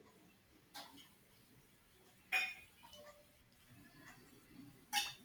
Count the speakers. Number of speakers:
zero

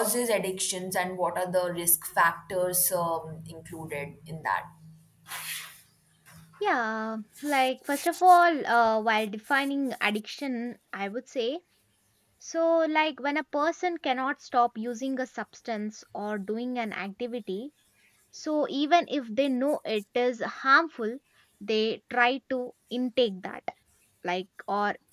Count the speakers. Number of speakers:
two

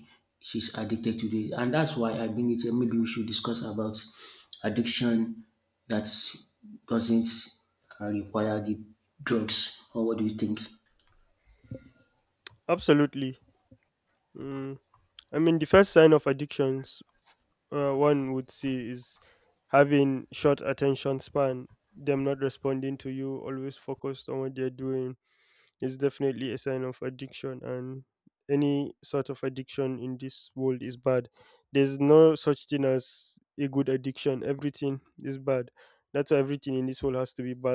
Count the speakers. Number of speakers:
two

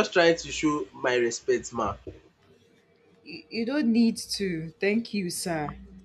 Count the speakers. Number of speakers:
two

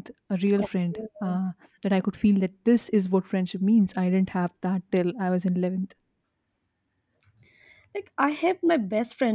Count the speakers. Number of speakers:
two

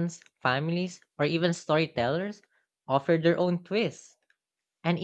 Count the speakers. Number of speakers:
one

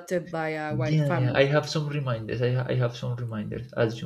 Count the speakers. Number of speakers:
two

